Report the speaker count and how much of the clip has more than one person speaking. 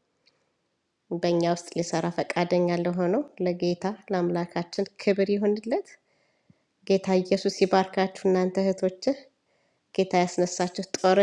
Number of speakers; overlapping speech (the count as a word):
one, no overlap